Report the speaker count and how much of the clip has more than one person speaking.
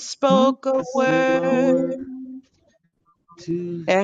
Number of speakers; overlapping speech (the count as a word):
three, about 31%